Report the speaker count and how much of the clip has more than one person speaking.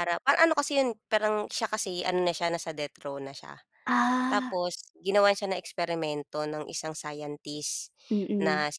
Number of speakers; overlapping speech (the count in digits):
2, about 5%